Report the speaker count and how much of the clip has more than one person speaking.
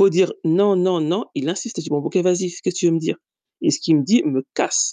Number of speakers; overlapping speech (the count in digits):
1, no overlap